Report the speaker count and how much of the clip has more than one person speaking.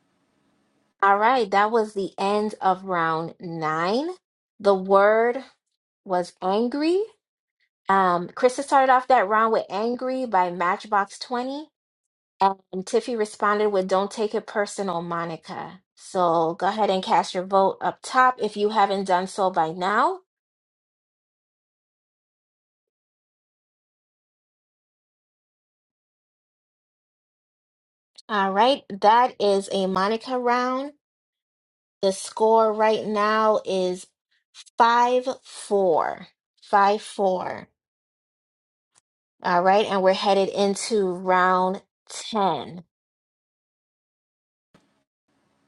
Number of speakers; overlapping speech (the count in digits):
1, no overlap